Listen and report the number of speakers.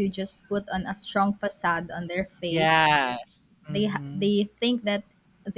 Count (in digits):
2